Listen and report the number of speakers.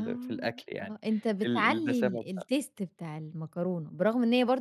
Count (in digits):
2